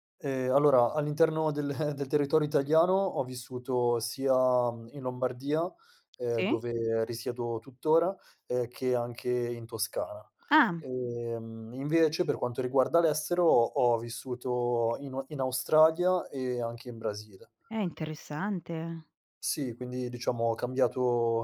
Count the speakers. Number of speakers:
2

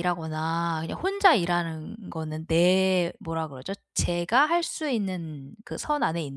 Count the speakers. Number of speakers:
1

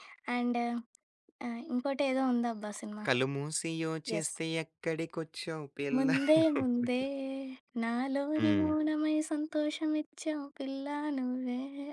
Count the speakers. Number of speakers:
2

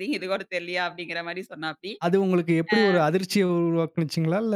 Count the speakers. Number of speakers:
2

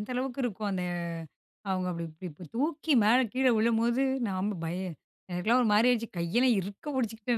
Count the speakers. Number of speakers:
1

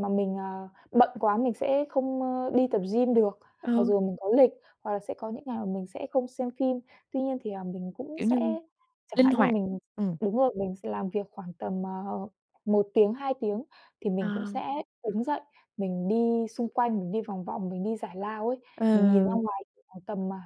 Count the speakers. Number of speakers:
2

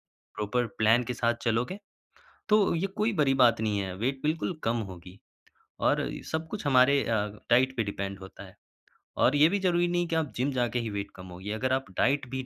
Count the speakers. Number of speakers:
1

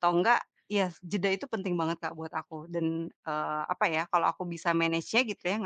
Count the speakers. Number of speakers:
1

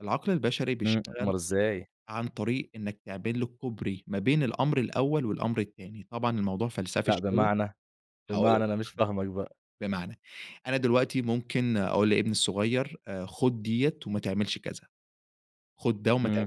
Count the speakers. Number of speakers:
2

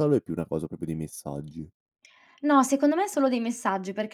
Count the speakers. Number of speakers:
2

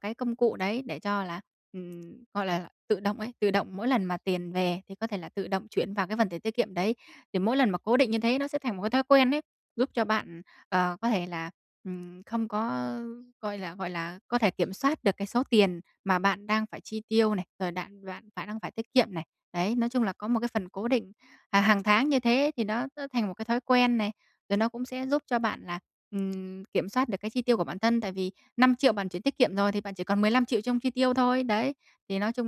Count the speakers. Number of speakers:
1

